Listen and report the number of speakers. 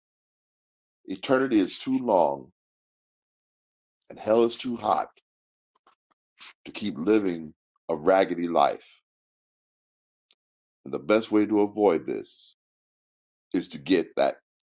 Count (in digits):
1